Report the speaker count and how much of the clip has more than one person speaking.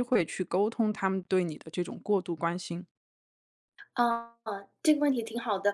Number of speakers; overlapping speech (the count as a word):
two, no overlap